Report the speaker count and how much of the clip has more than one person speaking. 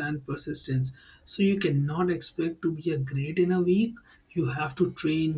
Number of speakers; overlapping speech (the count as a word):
one, no overlap